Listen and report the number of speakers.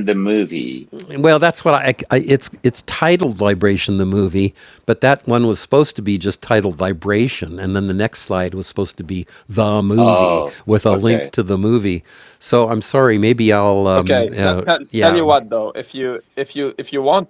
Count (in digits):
3